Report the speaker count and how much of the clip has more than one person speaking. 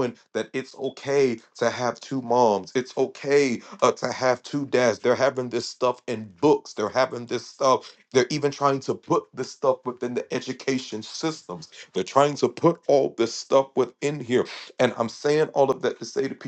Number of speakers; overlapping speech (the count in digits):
1, no overlap